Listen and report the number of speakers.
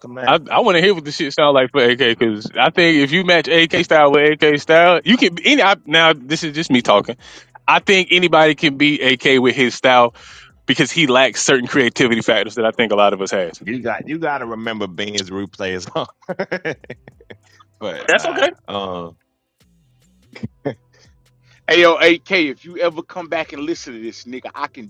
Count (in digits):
3